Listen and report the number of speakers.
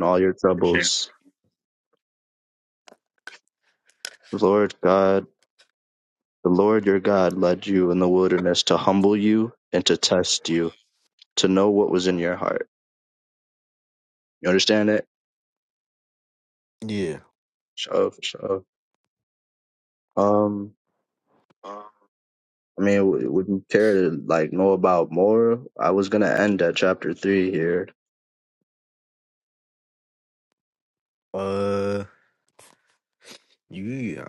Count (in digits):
2